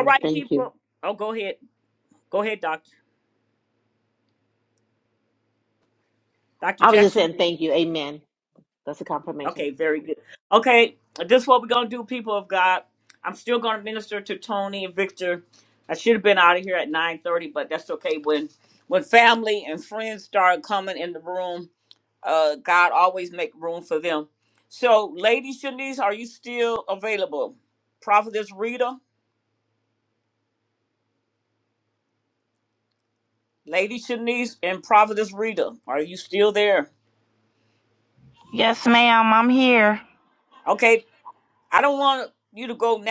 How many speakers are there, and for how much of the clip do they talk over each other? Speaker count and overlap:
3, about 3%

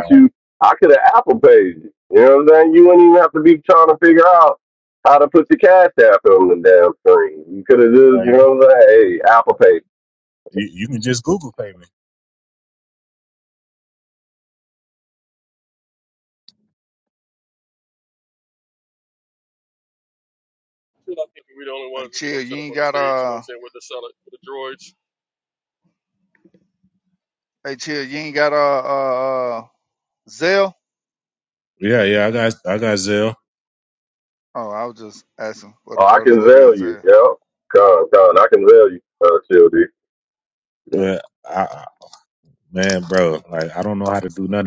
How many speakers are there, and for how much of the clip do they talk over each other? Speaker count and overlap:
4, about 6%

